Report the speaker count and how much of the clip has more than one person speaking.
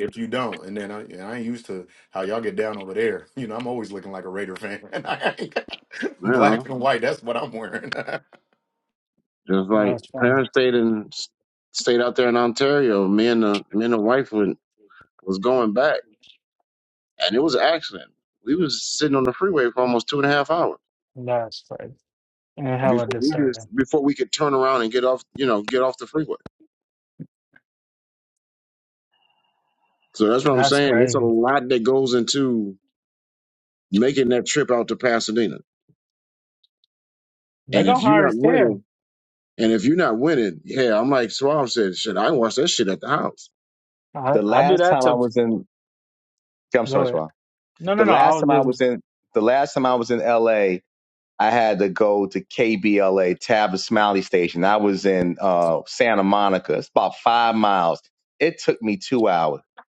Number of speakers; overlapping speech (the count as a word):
four, about 9%